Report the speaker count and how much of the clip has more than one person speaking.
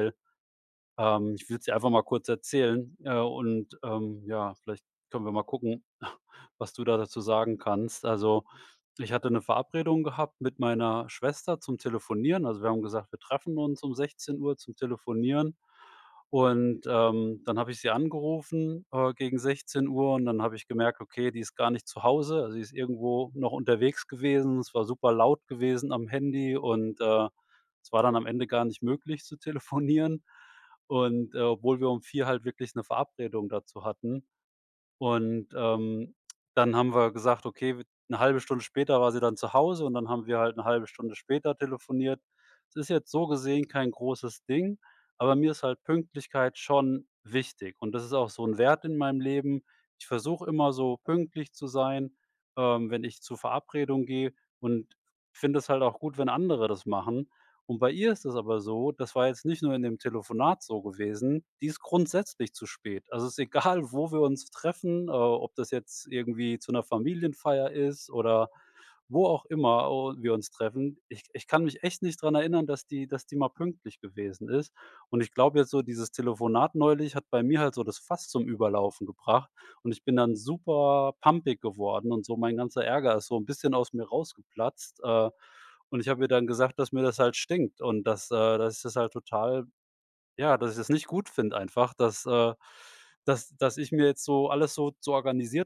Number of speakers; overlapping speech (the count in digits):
1, no overlap